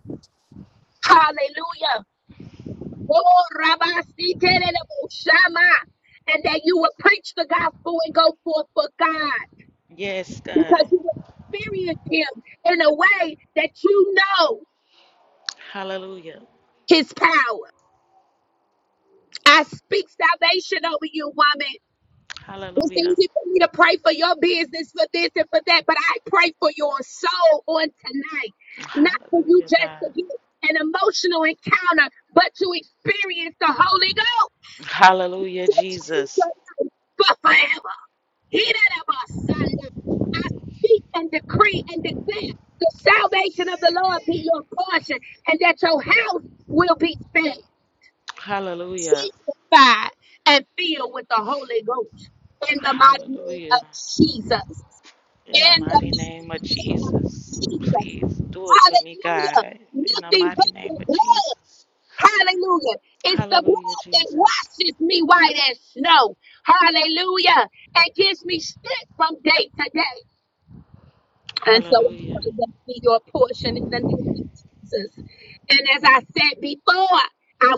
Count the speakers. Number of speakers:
2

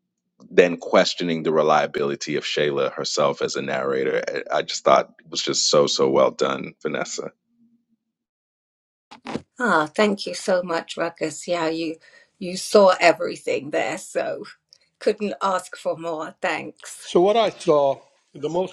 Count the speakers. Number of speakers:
3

